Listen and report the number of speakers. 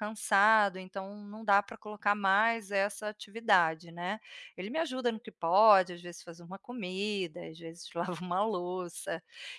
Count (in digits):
1